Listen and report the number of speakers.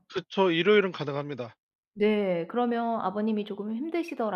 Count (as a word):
two